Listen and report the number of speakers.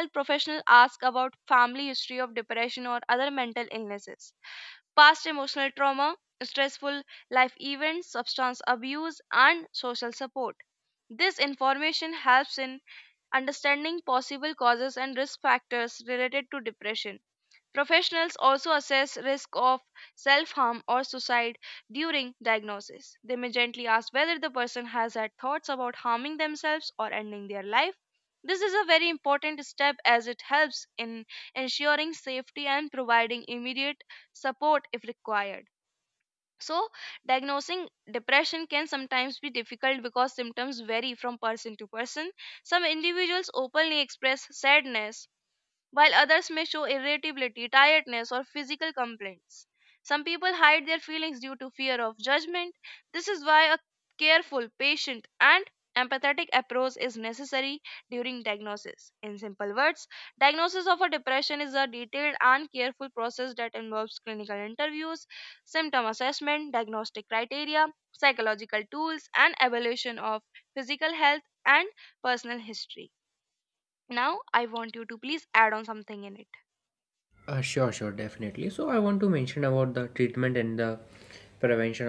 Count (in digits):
2